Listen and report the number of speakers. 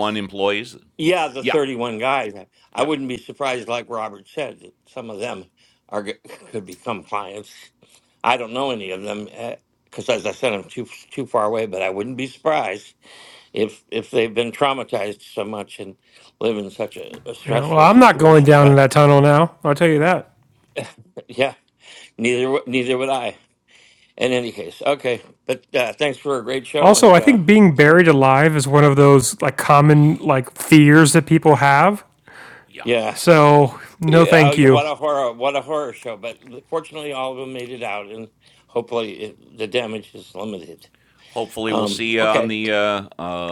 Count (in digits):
3